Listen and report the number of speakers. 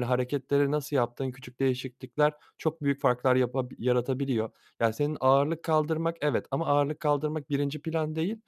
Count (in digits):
1